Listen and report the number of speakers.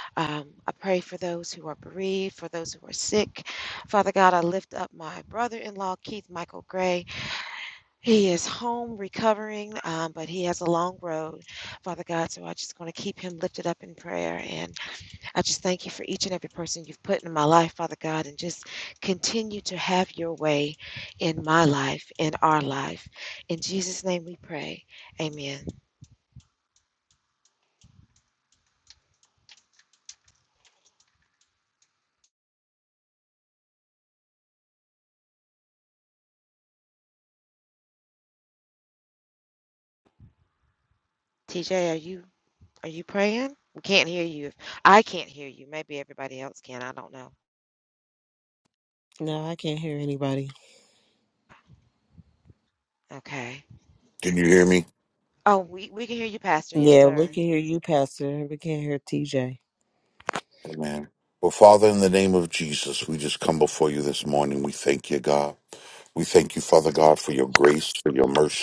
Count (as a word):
three